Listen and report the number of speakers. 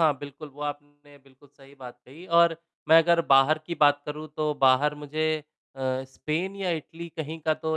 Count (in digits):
1